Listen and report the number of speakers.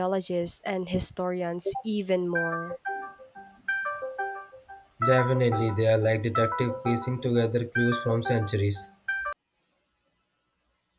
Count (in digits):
2